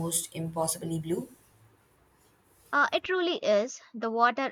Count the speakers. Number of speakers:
two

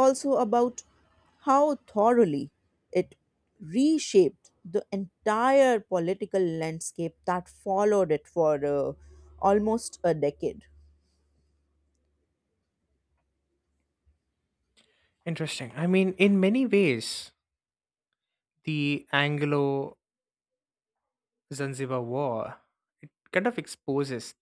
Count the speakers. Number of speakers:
two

